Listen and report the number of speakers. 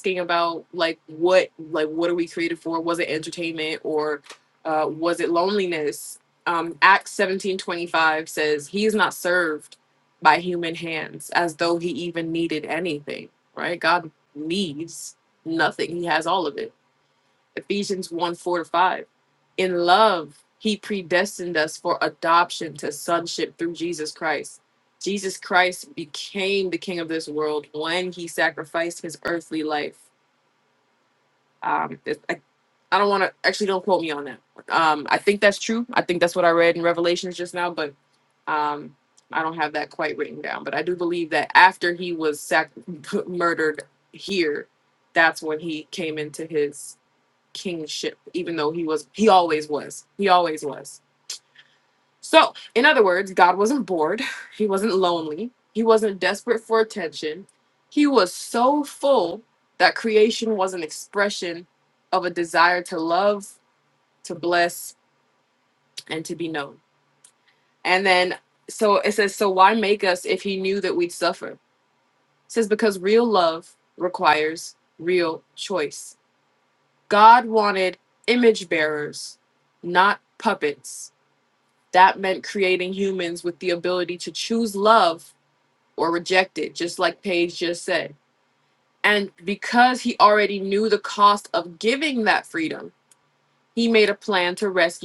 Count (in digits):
1